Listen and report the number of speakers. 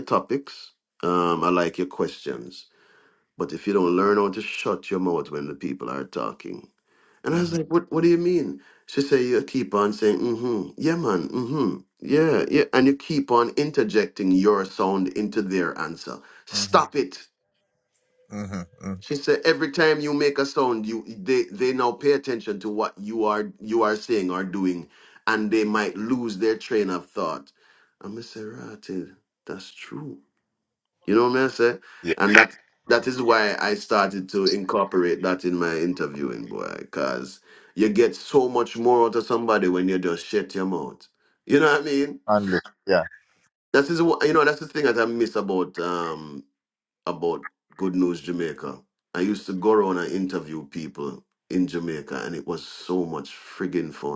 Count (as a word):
two